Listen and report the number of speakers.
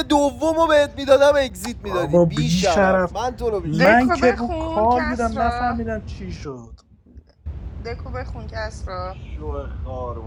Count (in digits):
3